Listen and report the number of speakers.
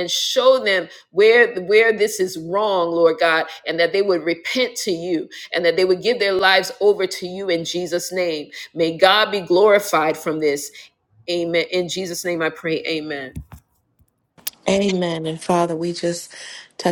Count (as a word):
two